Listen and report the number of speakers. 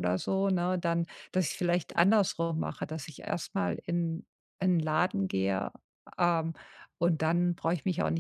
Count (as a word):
one